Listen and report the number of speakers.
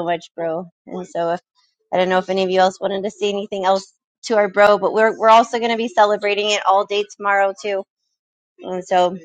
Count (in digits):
1